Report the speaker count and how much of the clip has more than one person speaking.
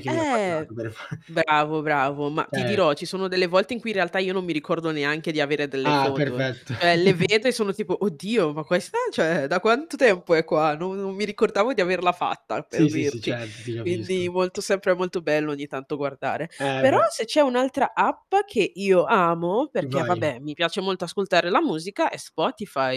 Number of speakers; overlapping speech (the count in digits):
2, about 13%